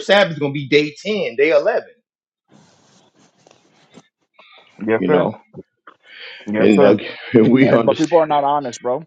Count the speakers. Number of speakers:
2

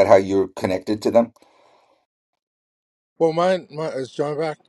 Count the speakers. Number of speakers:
2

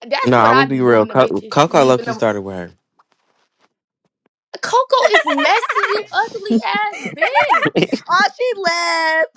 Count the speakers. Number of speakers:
3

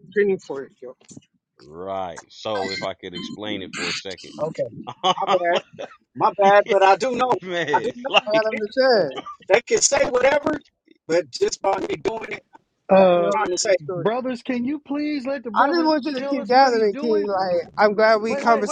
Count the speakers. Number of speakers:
4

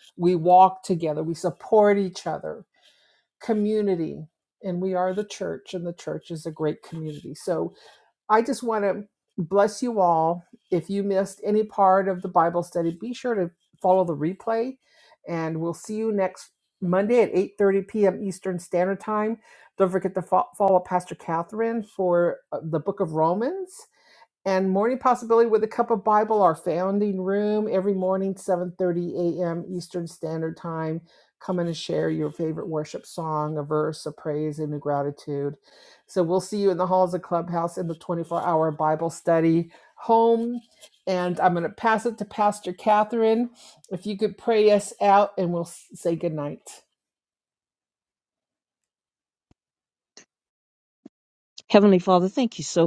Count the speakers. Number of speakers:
2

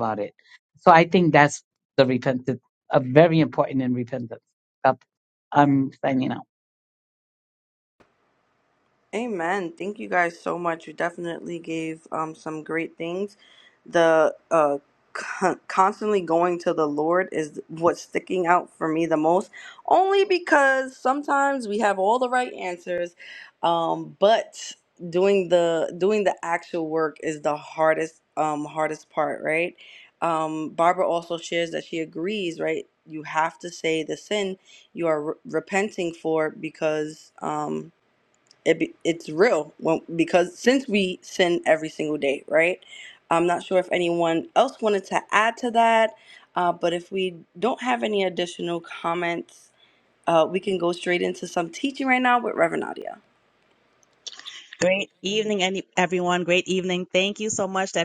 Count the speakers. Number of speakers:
3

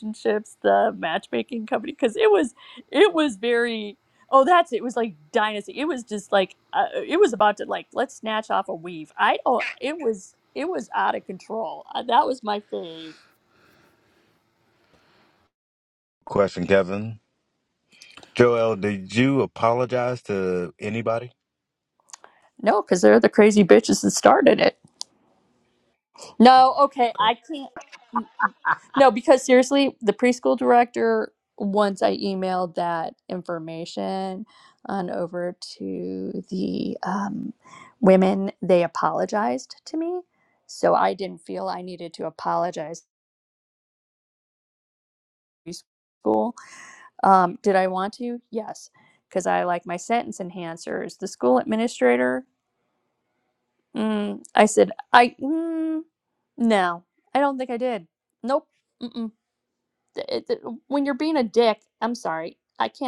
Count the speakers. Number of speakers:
2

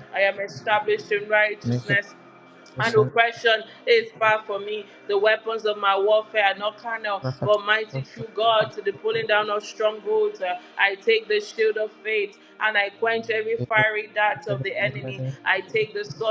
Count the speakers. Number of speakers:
1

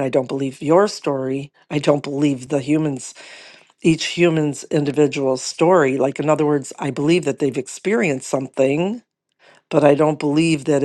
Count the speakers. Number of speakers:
1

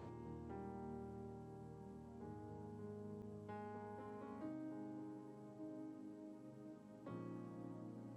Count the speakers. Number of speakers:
0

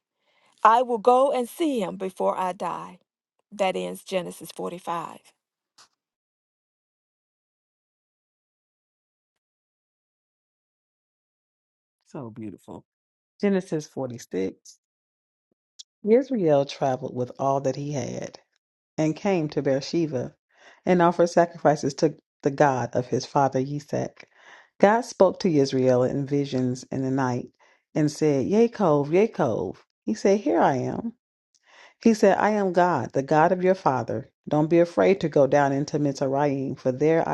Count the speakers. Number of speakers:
2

